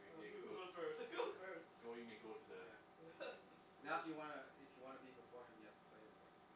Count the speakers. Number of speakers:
three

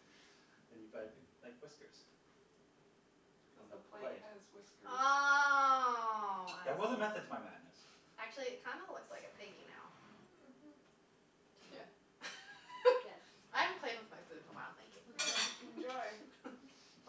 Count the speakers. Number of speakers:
four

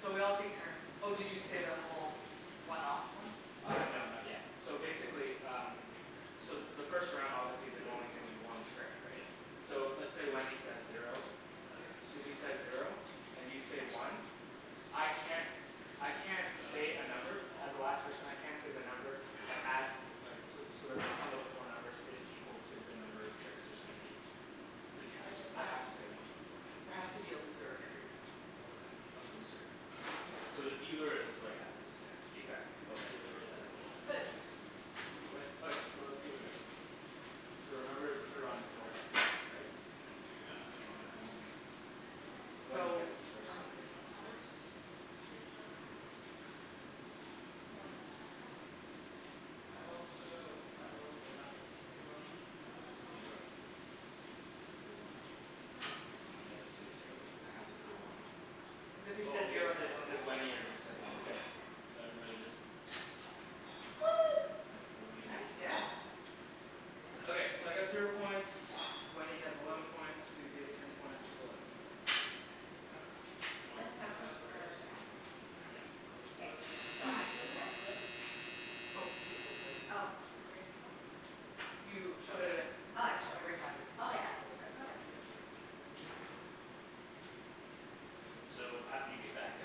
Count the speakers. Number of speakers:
four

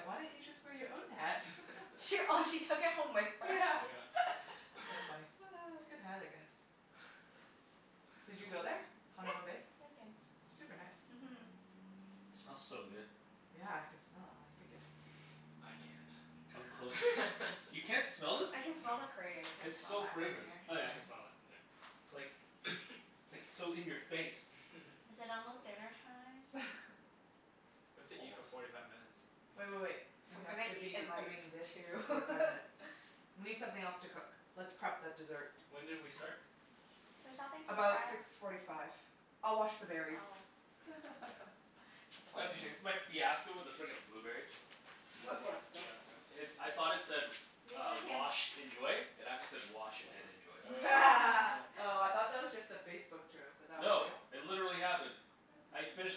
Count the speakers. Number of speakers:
four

